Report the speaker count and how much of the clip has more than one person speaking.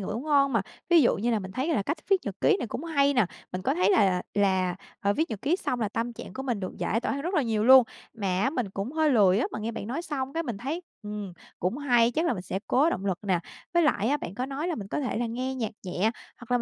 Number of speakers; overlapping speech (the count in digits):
1, no overlap